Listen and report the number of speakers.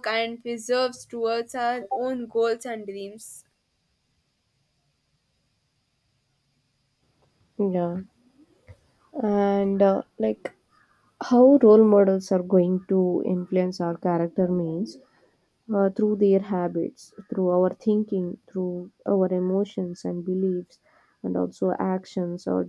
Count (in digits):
2